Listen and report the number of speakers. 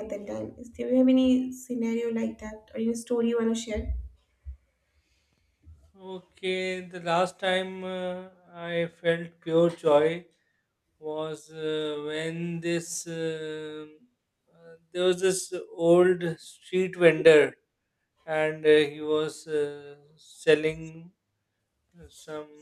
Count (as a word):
two